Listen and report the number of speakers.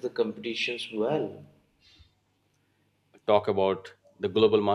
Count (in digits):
2